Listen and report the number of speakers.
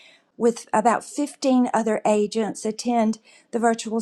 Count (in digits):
1